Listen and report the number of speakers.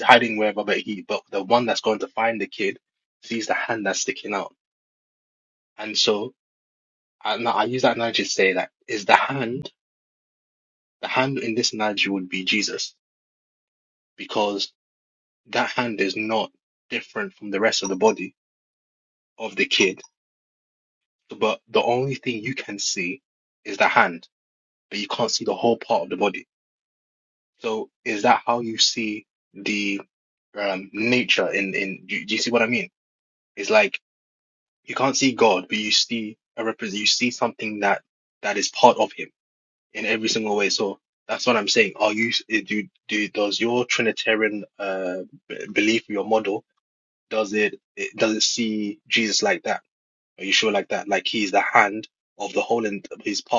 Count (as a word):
one